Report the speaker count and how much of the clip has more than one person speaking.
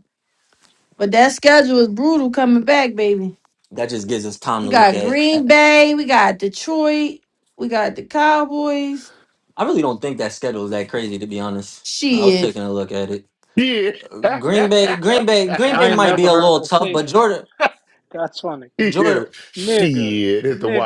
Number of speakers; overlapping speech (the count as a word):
four, about 21%